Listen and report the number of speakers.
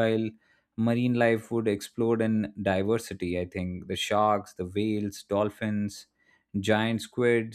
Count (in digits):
1